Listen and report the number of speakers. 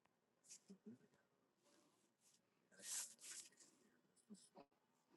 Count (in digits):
0